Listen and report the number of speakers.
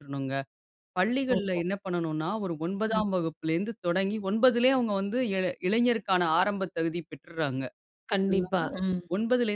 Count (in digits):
2